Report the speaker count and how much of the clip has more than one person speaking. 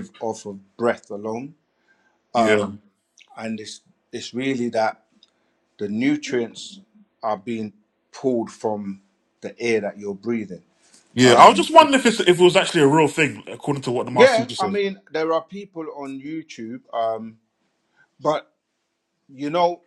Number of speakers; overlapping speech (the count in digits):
2, about 5%